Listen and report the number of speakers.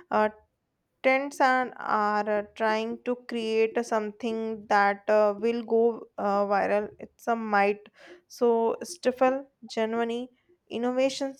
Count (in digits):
1